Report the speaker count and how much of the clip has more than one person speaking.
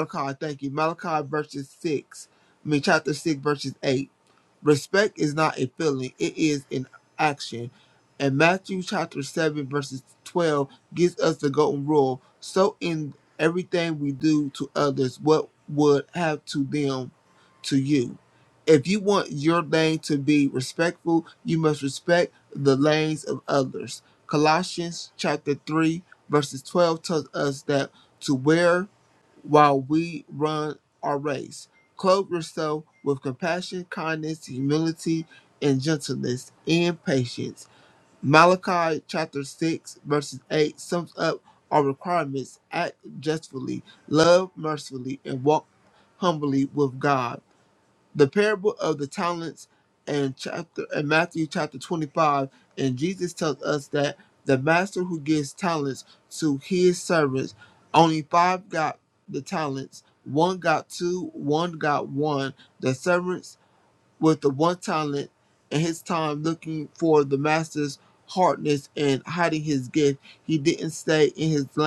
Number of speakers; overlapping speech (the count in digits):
1, no overlap